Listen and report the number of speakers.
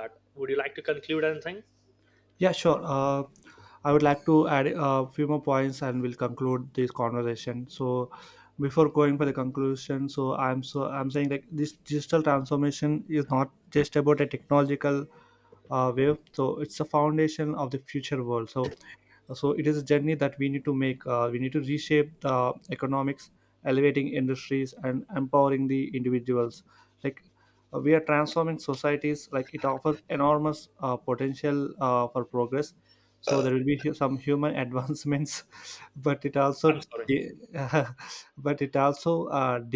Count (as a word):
two